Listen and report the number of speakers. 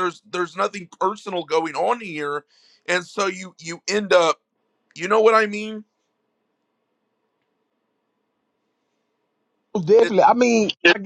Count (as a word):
two